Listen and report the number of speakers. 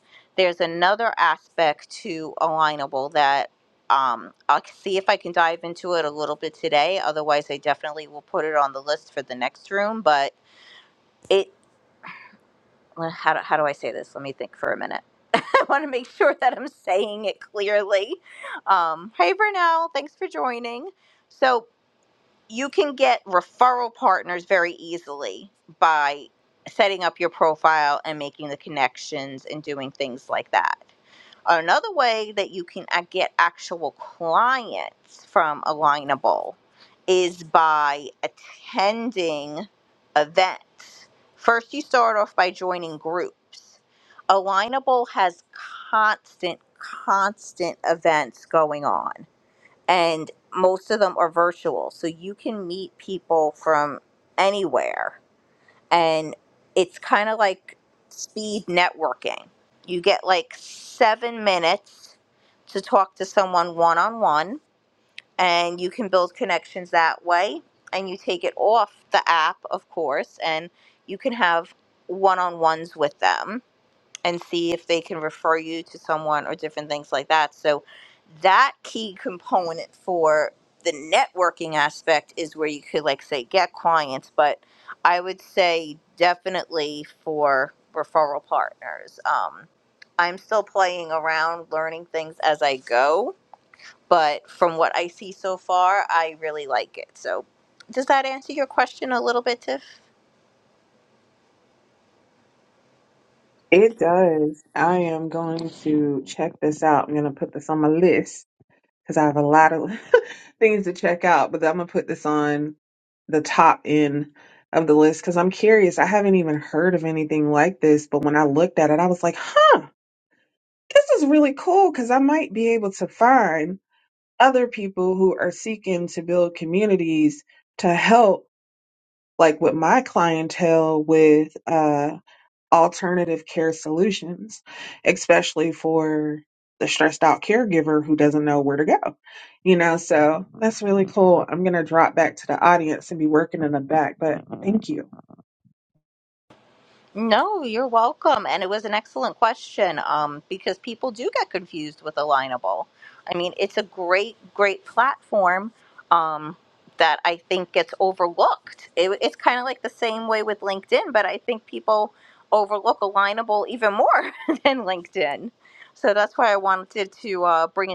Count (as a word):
two